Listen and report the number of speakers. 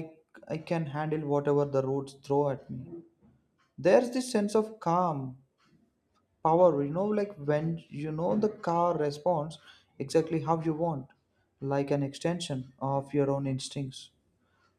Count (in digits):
1